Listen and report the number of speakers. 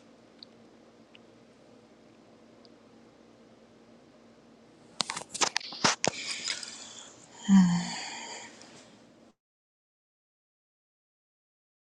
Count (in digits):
0